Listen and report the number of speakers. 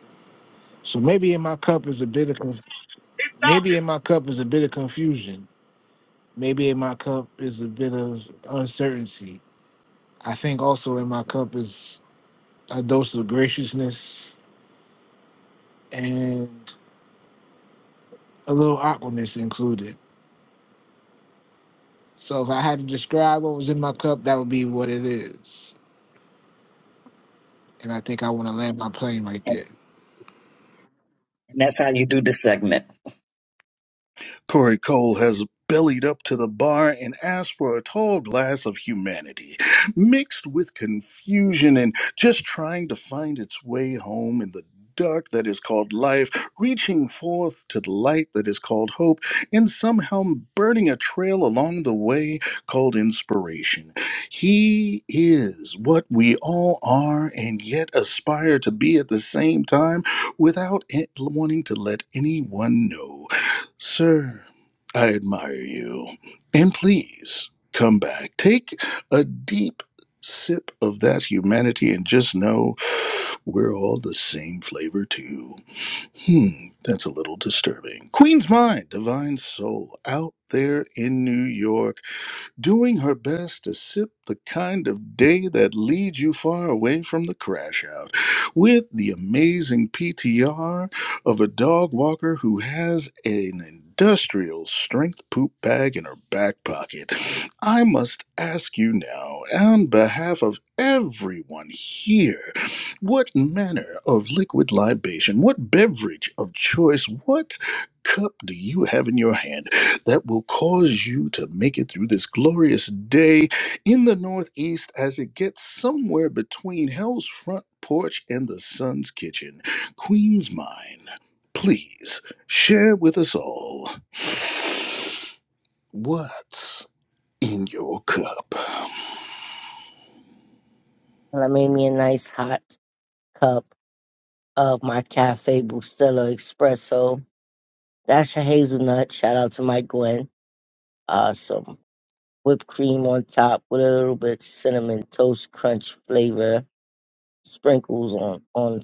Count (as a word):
four